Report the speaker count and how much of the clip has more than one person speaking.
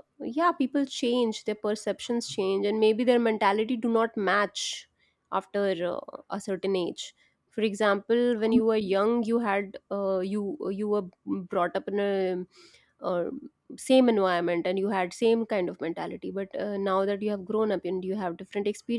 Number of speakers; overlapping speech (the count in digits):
1, no overlap